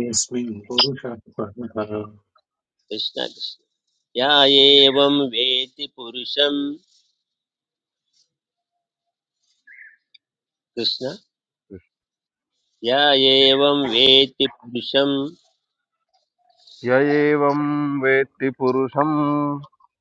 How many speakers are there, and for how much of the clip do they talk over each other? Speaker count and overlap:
three, no overlap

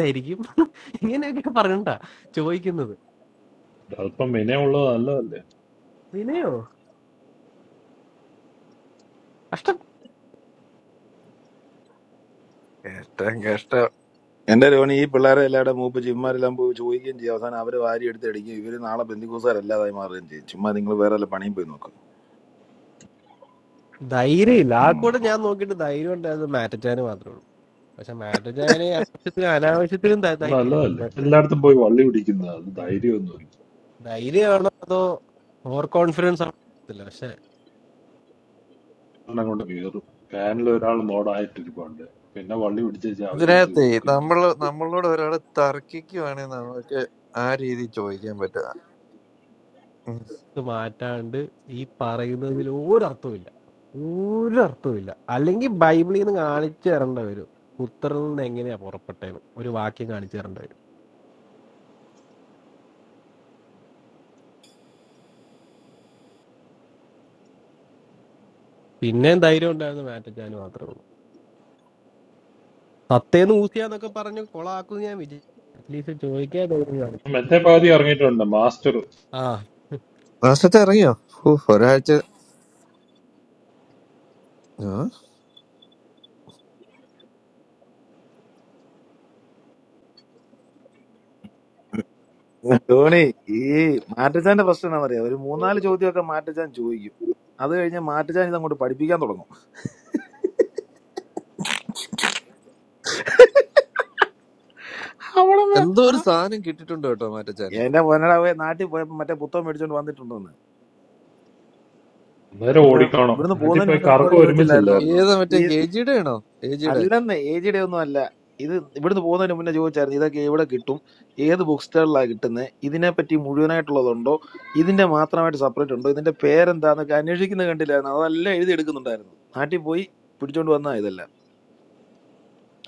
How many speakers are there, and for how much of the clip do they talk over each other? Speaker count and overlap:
four, about 3%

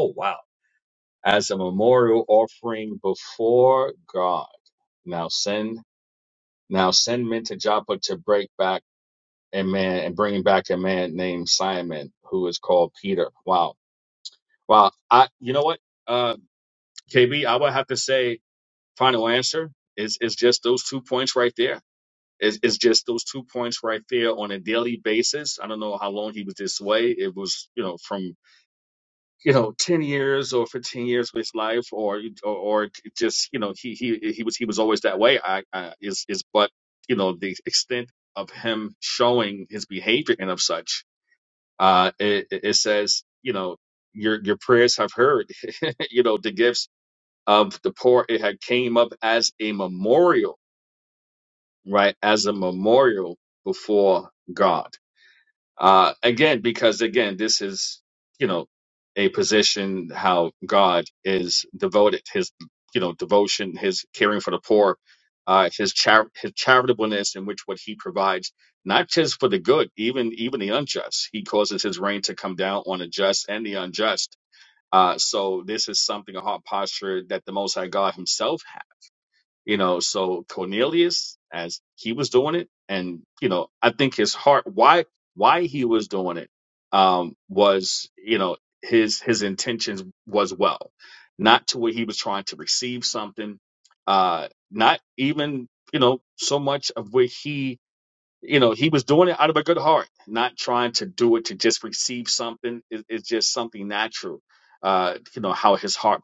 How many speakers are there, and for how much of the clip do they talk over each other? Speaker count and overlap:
one, no overlap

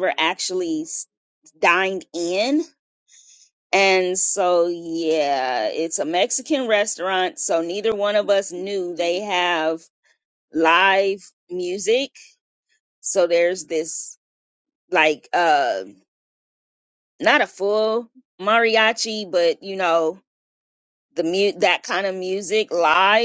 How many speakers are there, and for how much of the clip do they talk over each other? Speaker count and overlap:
one, no overlap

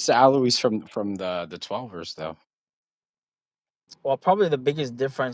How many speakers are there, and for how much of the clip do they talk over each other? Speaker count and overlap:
two, no overlap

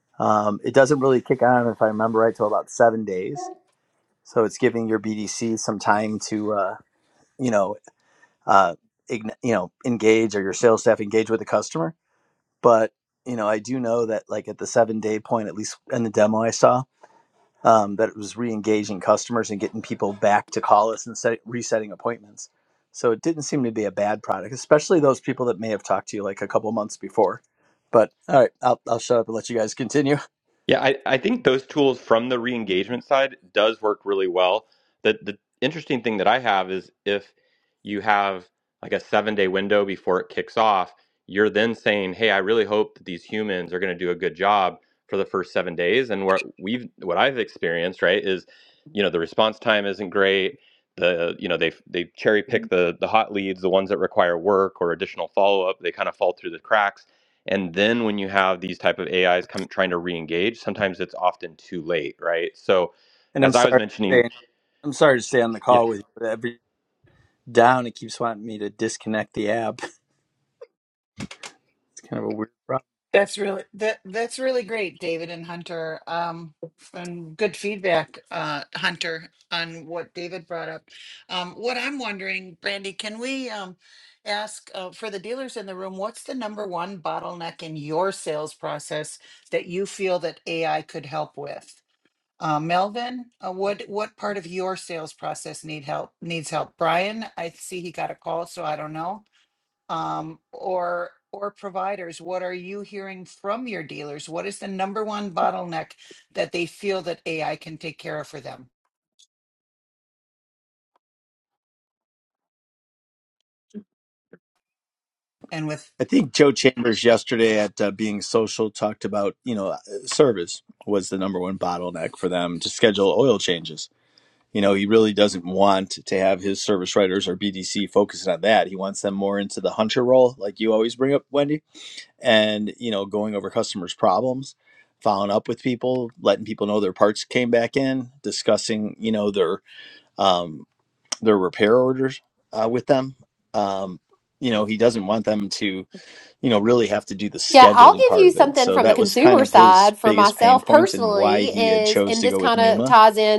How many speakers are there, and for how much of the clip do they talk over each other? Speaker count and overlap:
four, about 4%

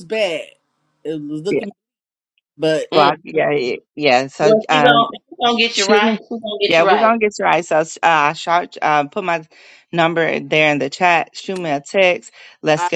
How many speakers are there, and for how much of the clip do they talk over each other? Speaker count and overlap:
three, about 18%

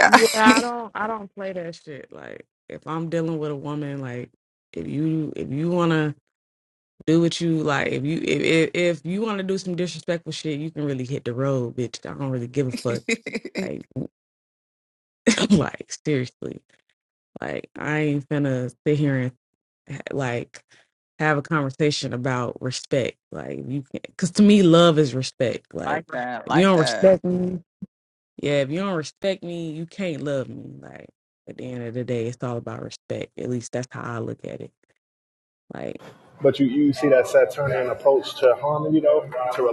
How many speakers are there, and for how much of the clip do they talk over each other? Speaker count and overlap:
three, about 3%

